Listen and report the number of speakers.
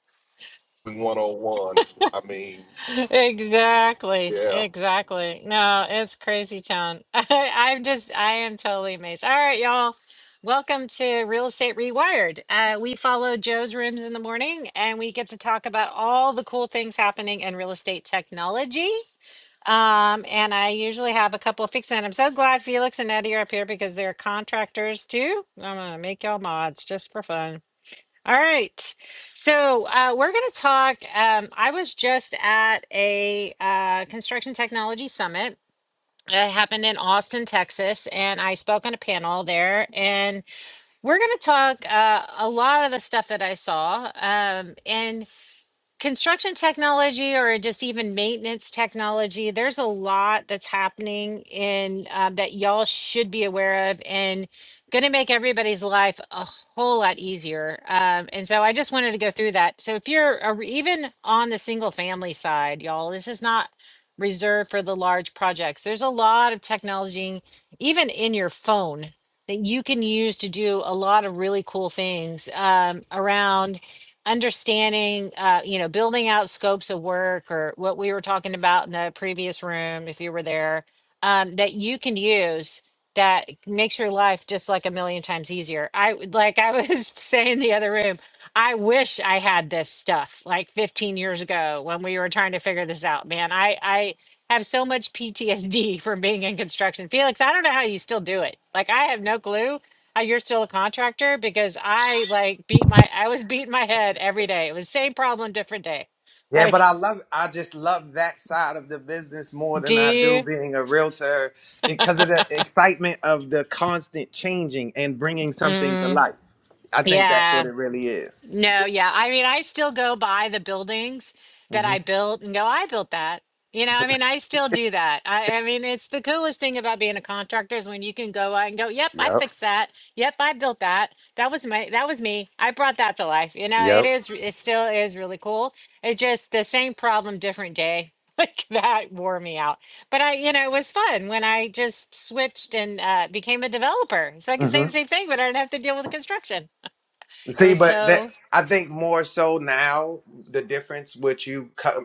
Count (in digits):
3